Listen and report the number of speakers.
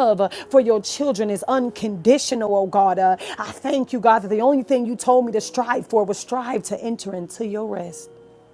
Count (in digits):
1